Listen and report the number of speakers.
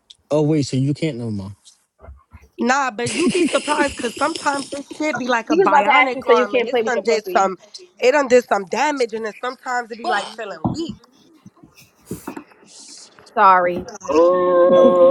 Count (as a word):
four